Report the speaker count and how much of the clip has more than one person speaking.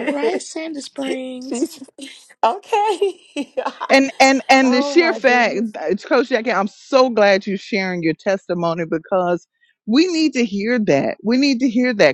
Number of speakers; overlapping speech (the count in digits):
3, about 8%